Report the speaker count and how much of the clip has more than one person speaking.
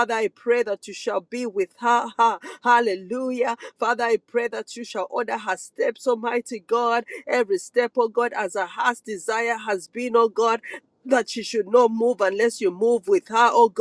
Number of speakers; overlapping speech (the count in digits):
1, no overlap